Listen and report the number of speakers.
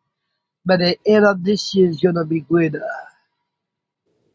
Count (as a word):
one